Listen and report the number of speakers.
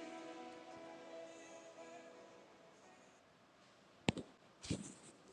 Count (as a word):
zero